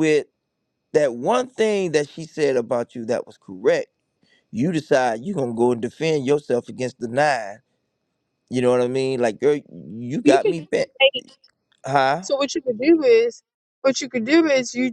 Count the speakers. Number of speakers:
2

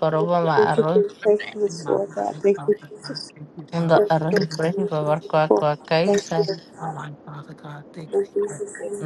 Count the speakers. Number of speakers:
3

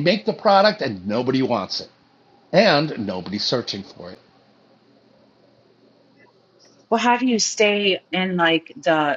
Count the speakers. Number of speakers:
2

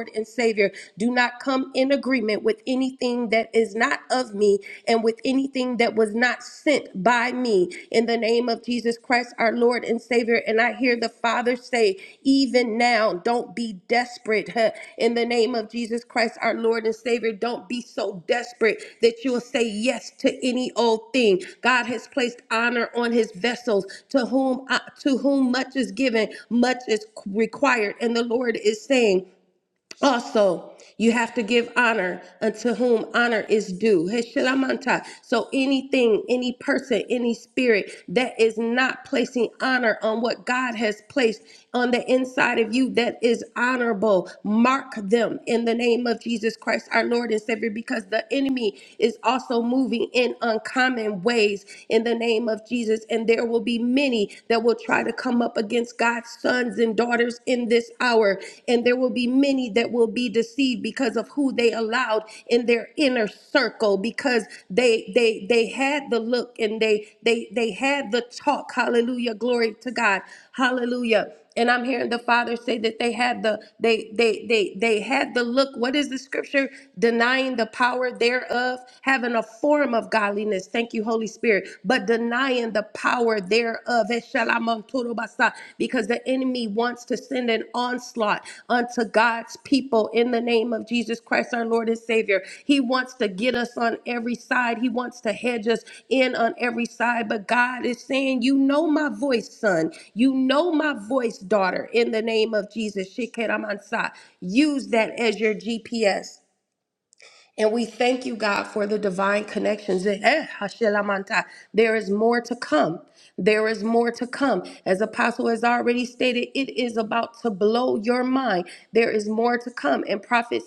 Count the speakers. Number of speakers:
1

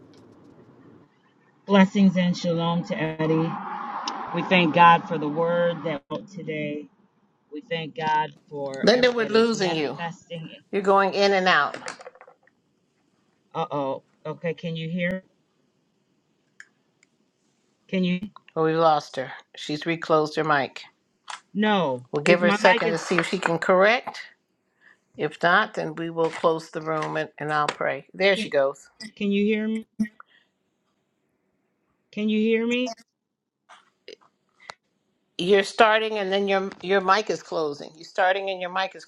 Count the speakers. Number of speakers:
2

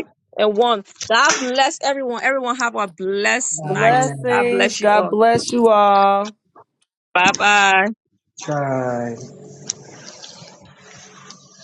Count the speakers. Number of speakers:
3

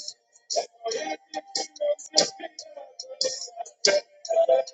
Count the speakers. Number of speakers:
0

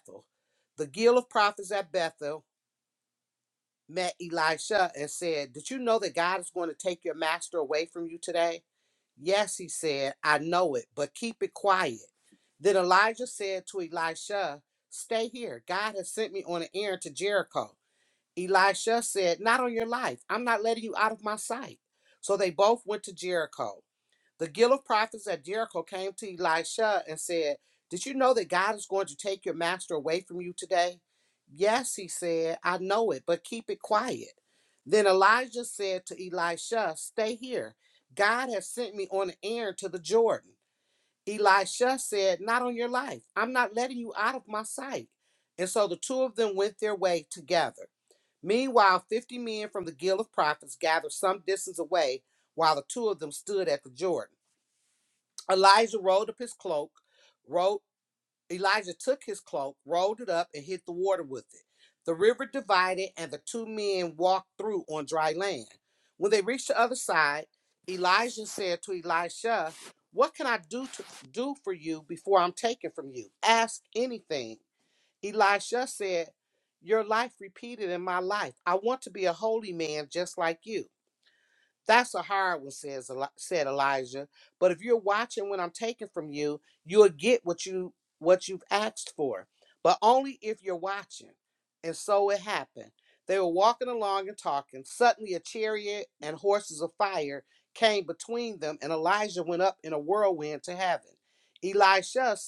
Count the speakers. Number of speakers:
1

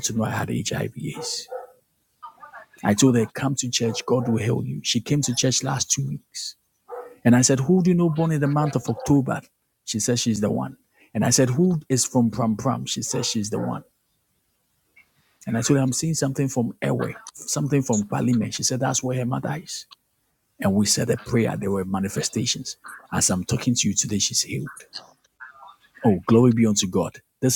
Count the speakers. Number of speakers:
1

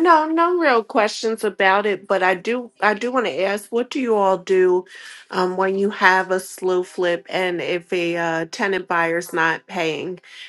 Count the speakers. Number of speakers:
1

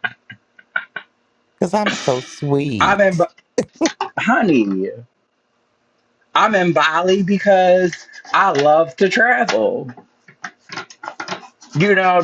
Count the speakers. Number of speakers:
2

